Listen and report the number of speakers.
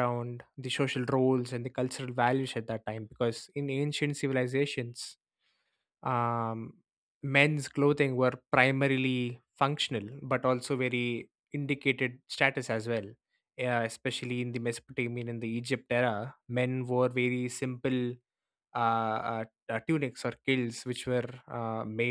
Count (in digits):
1